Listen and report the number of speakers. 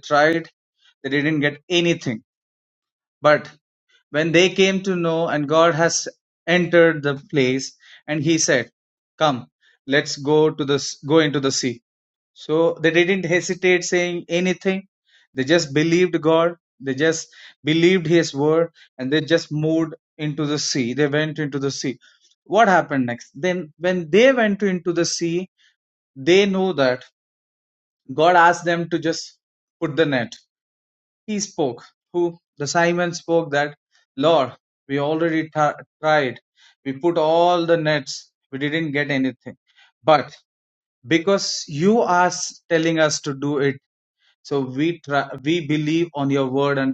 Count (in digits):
1